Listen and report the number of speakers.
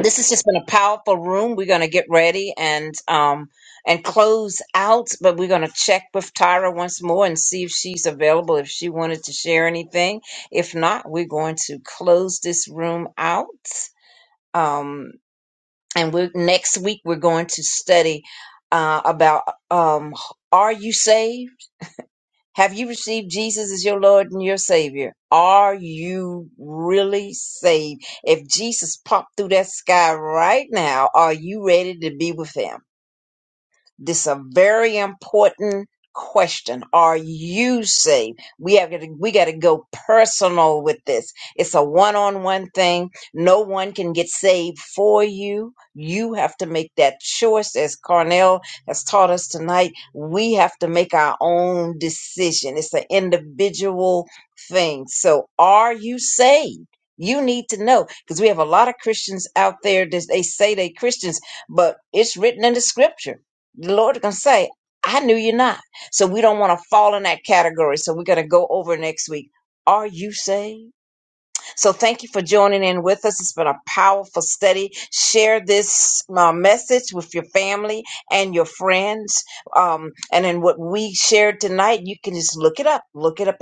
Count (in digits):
1